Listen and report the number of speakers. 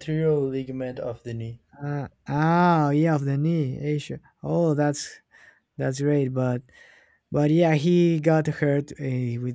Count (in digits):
2